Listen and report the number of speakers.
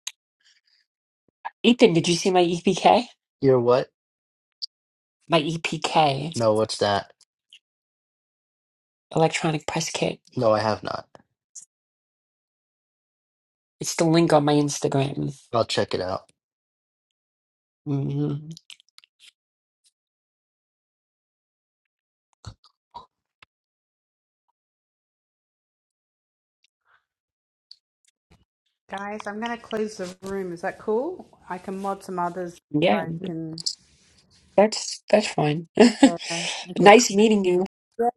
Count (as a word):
three